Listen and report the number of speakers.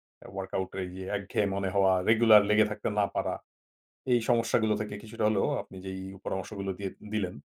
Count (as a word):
one